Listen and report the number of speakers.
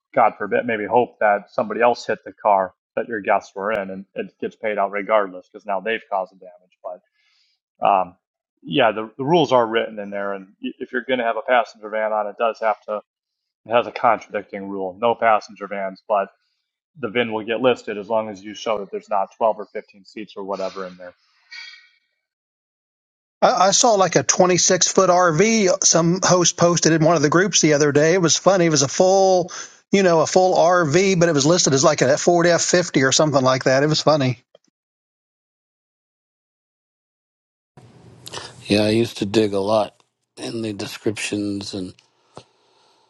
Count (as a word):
three